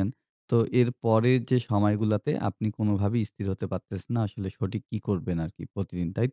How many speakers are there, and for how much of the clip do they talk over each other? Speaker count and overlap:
1, no overlap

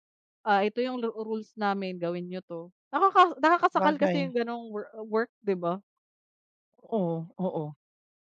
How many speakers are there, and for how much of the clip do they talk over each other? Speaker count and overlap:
2, about 6%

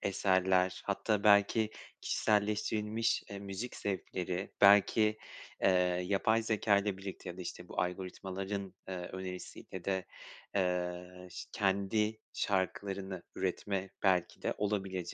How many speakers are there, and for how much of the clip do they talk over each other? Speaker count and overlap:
1, no overlap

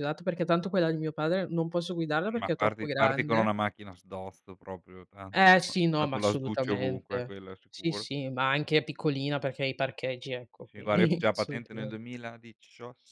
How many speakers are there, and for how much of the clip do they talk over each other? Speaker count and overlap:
2, about 29%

